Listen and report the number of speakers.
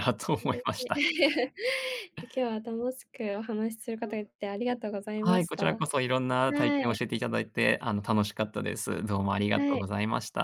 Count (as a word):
two